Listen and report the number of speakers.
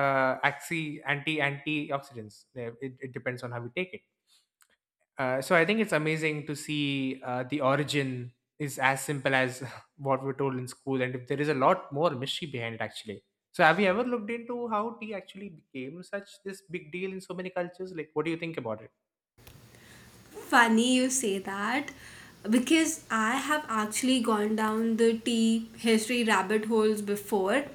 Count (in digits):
2